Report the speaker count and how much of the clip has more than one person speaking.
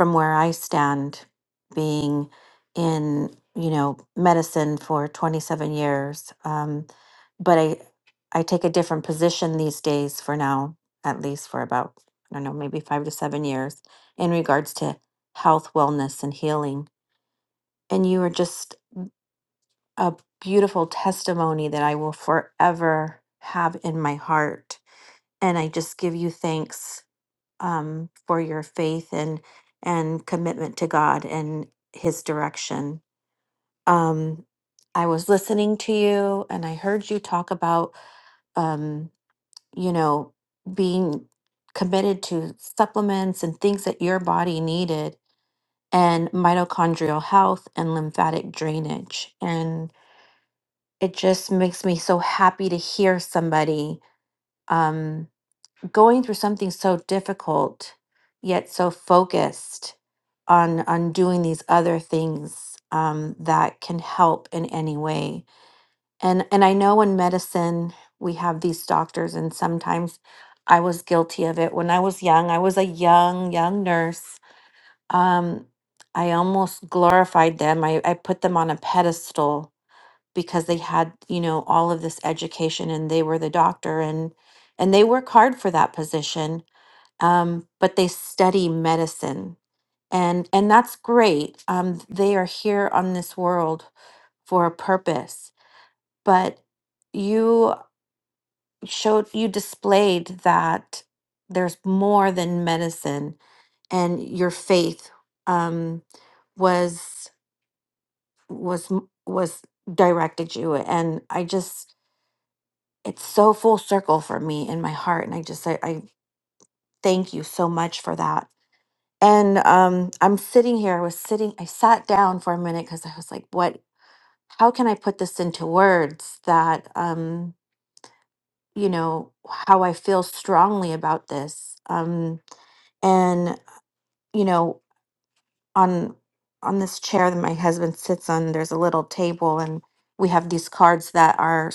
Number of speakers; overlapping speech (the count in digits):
1, no overlap